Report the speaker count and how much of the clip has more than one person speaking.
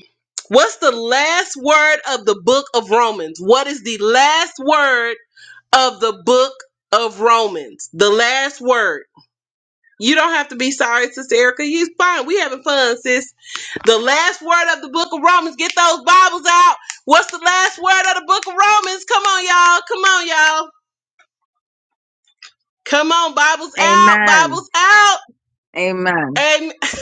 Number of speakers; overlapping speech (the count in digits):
2, about 3%